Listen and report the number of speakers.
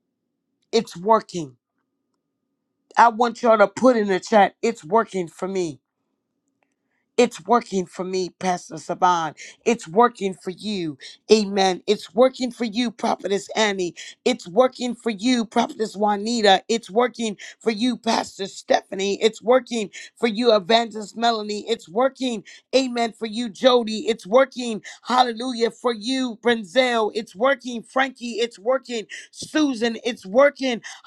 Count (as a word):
one